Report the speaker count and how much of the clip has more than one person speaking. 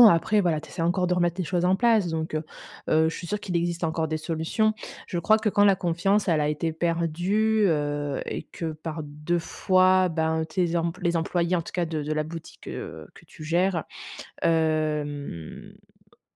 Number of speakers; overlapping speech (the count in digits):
1, no overlap